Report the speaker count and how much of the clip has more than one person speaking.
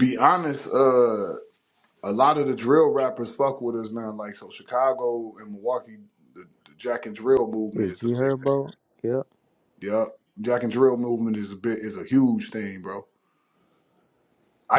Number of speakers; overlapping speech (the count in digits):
2, about 4%